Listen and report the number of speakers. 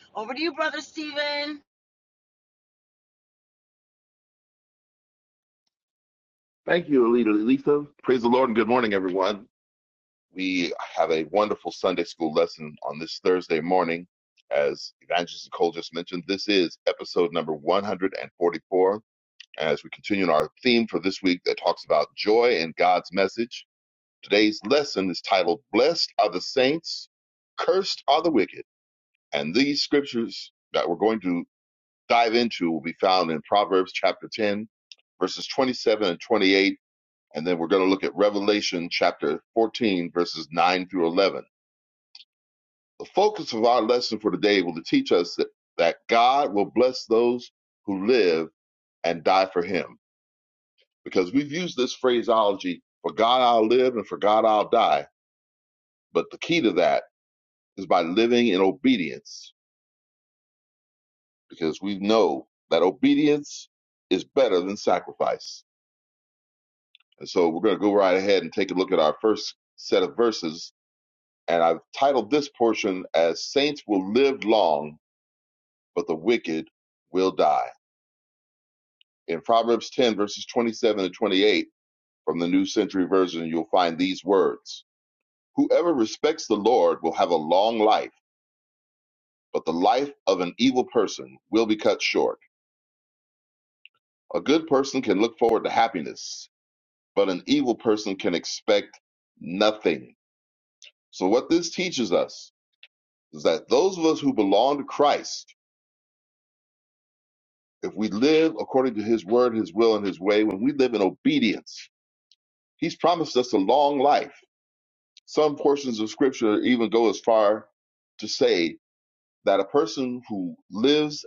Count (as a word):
two